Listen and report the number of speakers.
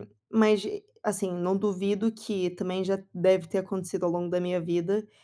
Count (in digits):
1